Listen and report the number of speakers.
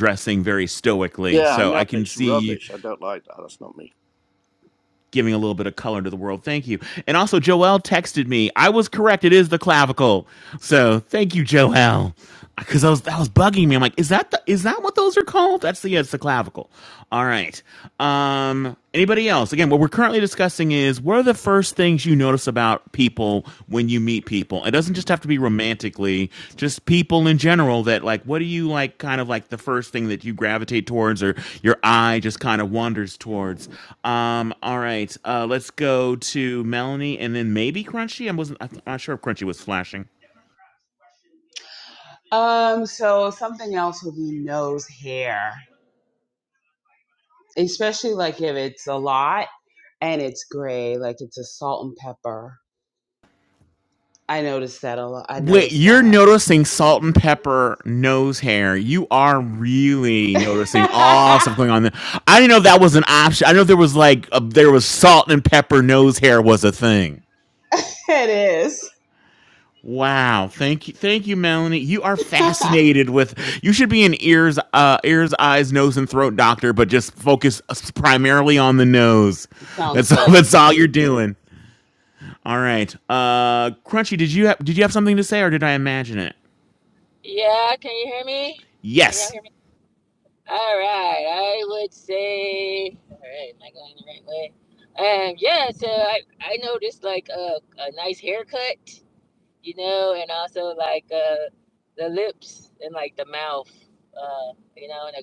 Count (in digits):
4